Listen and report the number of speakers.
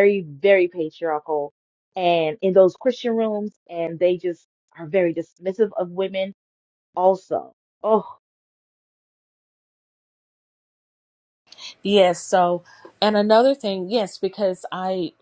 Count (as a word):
two